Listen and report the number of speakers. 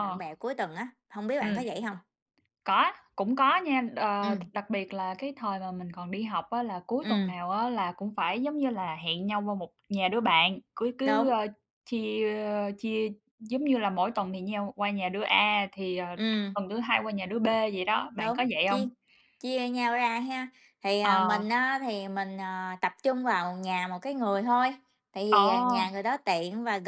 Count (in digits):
2